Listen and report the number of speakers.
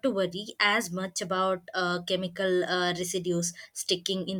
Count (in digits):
1